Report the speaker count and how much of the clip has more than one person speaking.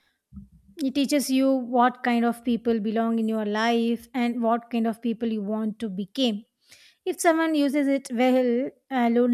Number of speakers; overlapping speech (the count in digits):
1, no overlap